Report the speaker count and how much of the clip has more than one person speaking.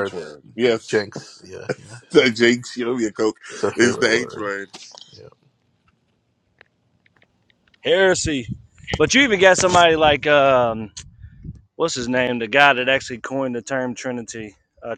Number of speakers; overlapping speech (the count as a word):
three, about 6%